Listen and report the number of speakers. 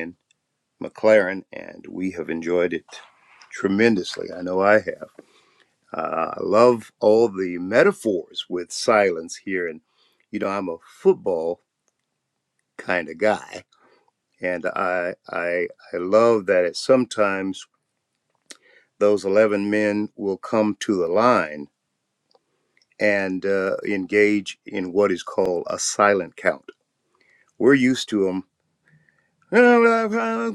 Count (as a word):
one